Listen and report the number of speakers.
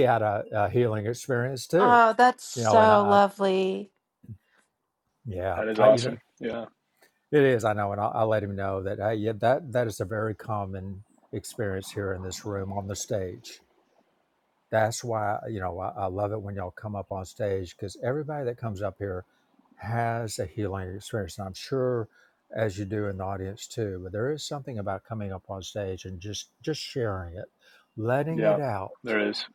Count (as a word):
three